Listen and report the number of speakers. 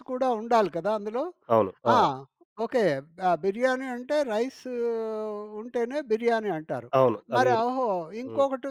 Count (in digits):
2